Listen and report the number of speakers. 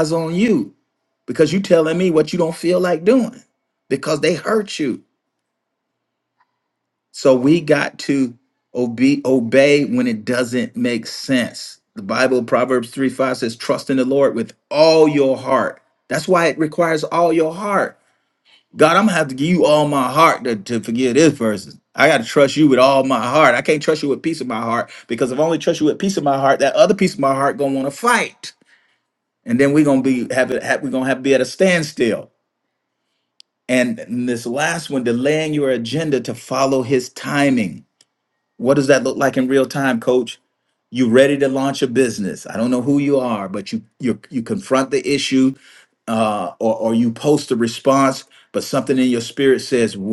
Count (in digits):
1